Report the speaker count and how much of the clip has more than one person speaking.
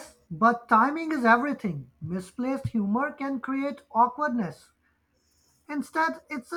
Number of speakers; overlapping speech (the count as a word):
one, no overlap